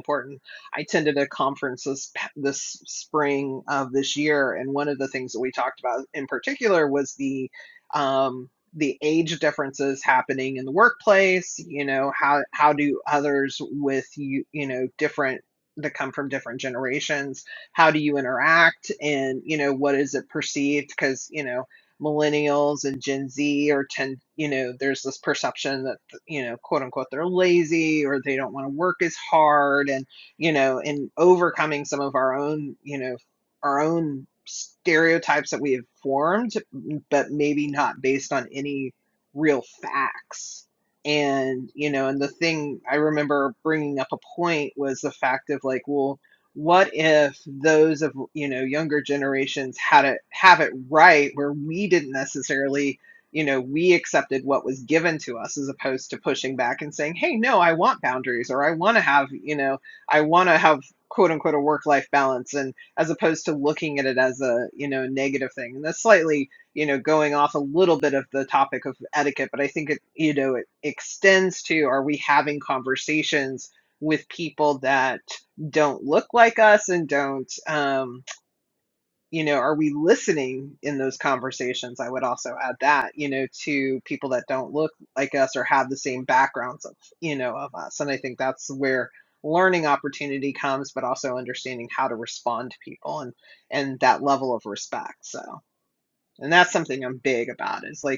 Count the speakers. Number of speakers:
1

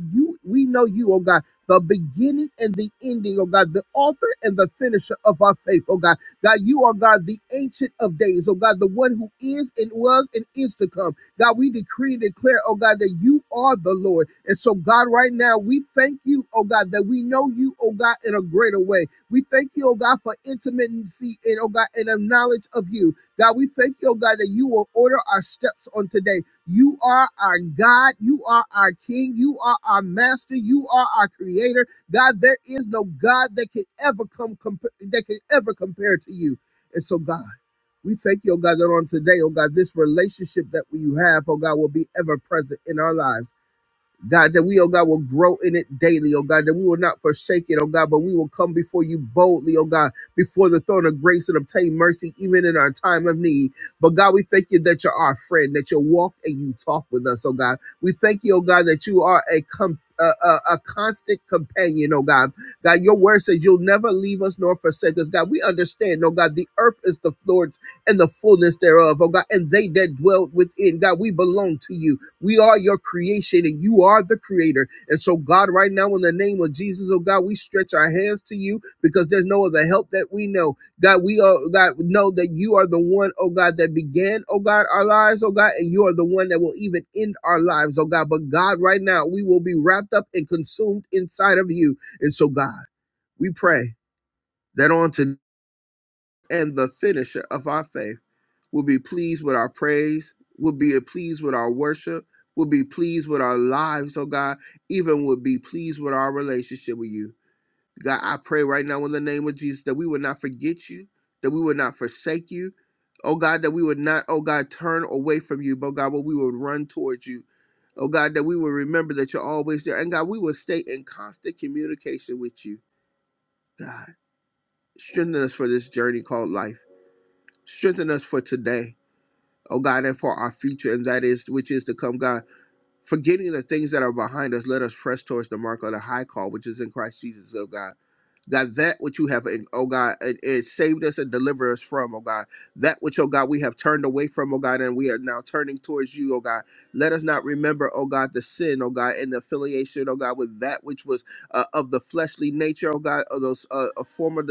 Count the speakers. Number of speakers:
1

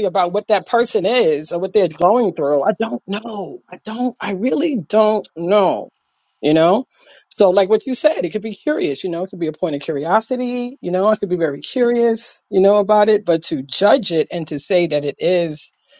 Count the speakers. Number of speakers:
1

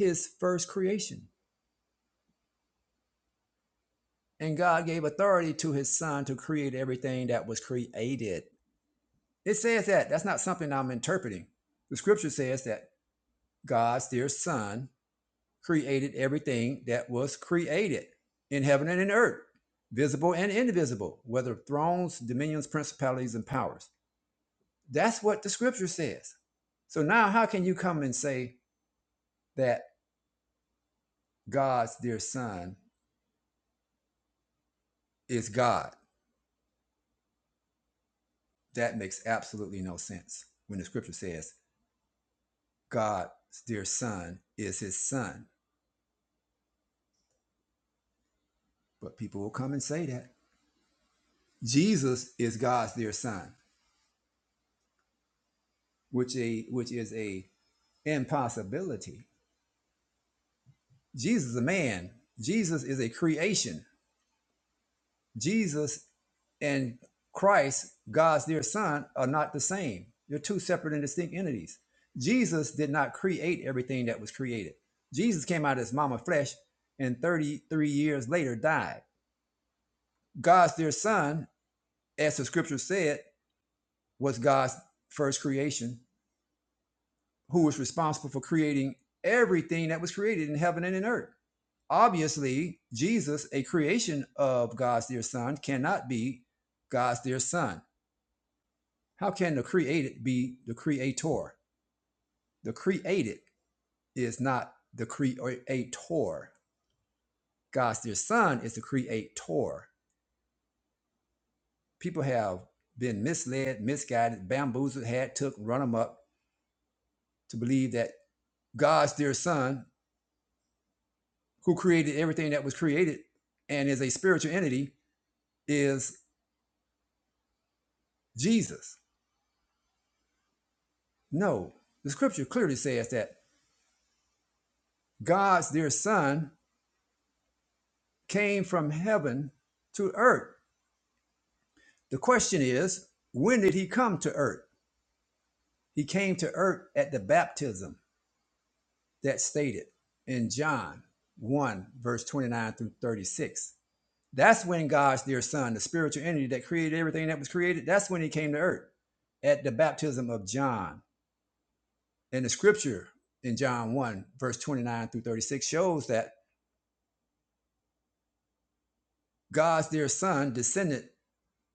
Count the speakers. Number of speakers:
1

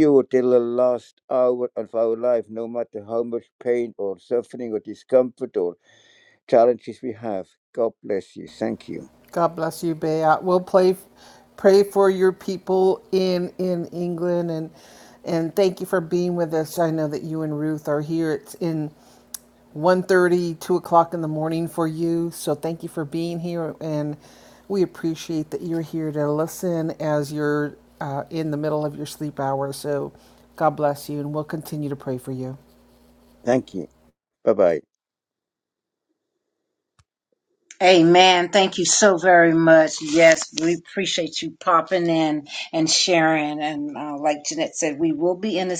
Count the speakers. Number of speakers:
3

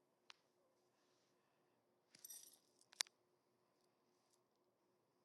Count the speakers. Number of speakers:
0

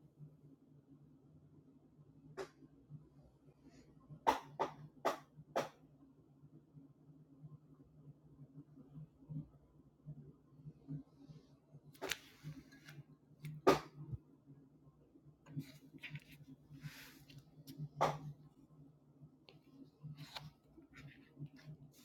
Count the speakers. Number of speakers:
0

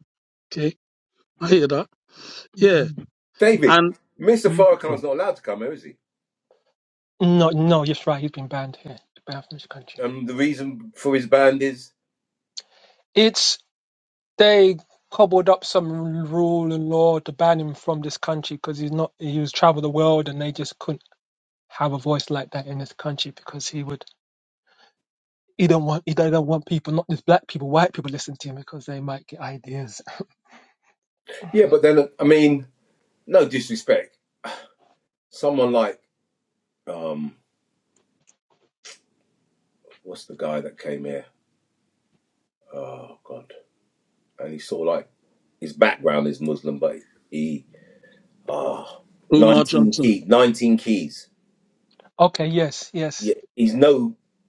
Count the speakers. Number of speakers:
3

